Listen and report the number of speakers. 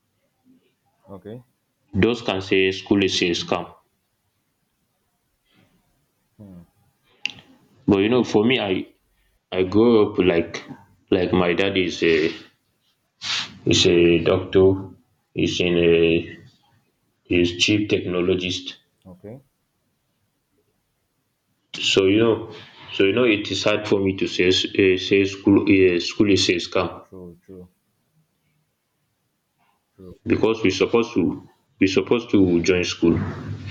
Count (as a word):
two